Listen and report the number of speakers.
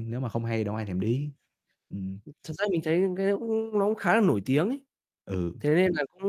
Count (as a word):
two